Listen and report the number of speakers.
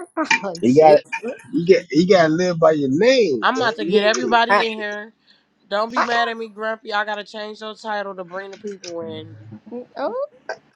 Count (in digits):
3